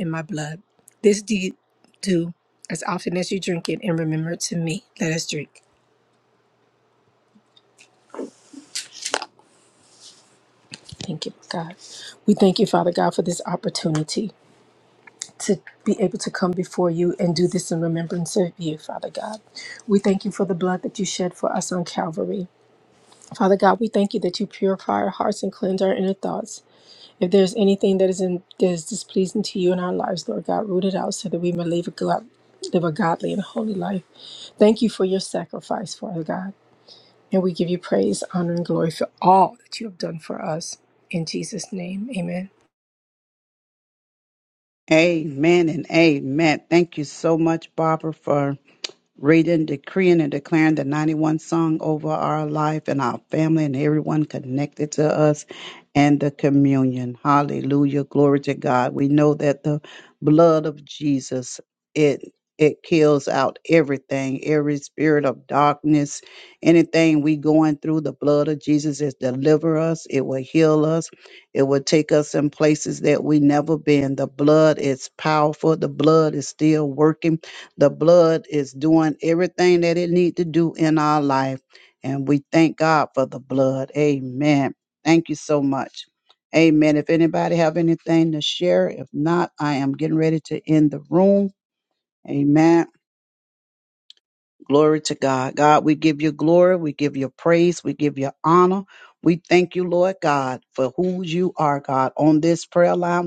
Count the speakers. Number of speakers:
two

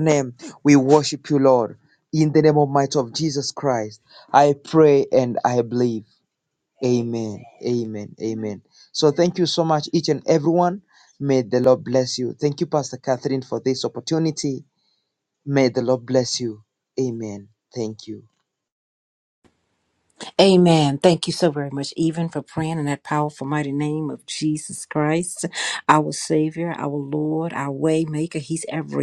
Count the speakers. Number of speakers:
two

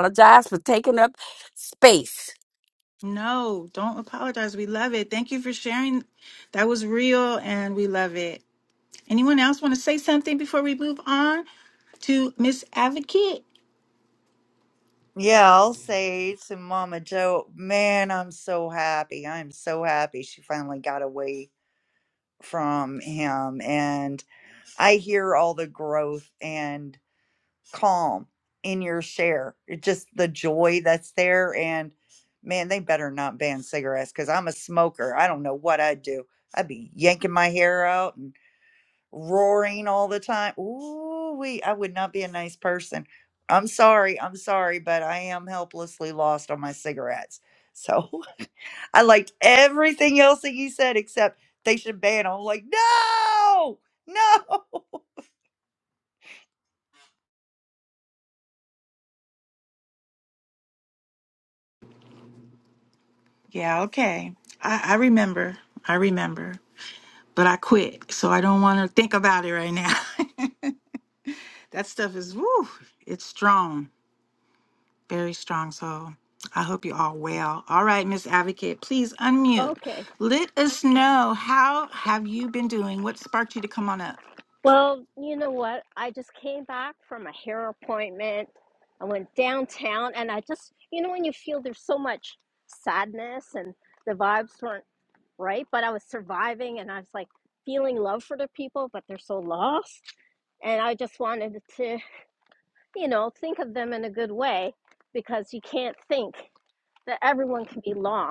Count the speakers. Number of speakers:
four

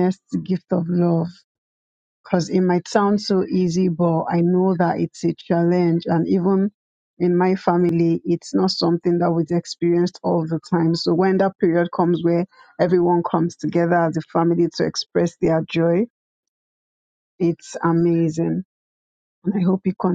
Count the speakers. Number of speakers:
one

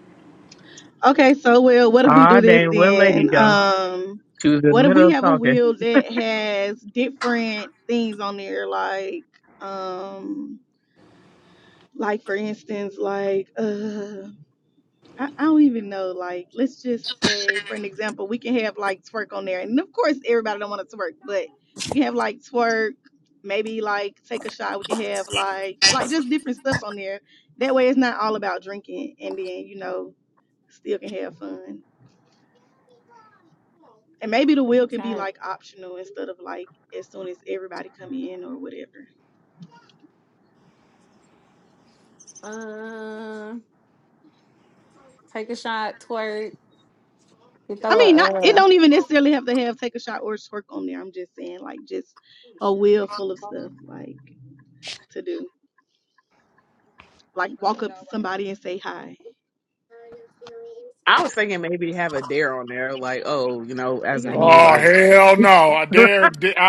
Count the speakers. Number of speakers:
four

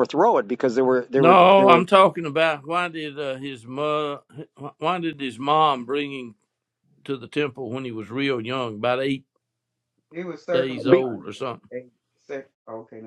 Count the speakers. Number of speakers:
three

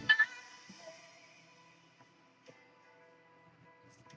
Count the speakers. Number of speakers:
zero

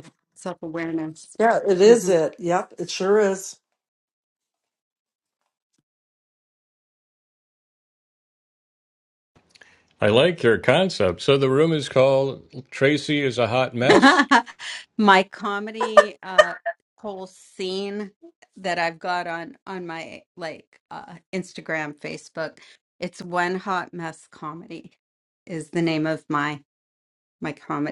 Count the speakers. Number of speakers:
three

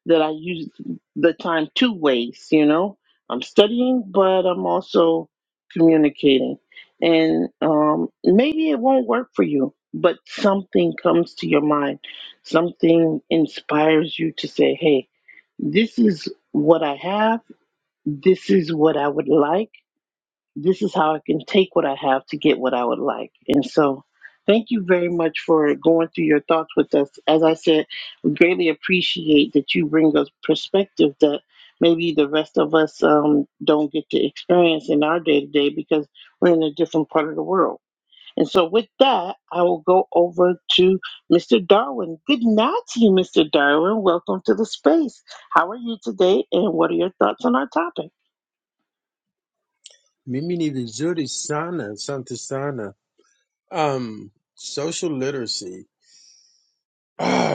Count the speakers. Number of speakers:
two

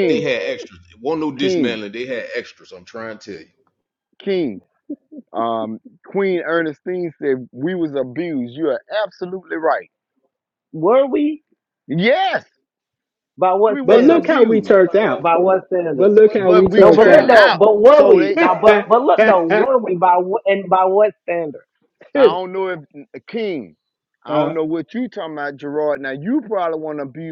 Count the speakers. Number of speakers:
four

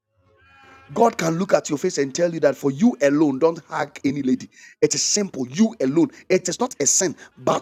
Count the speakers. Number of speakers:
one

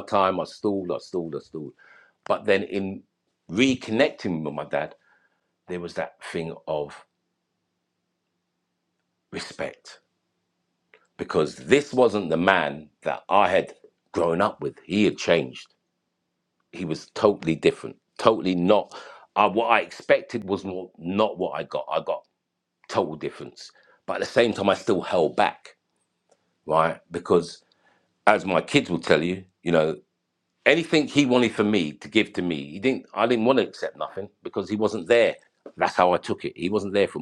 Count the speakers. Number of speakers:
one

